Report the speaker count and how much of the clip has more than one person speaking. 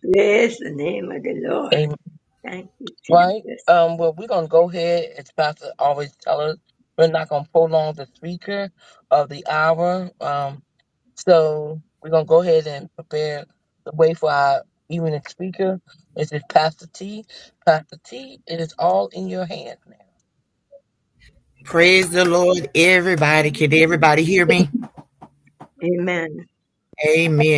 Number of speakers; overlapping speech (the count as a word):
three, about 2%